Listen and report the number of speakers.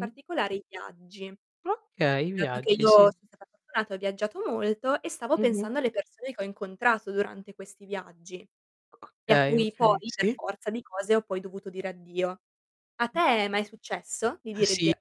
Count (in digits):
2